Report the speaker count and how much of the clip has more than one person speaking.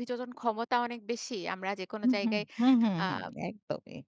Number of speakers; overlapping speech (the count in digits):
2, about 14%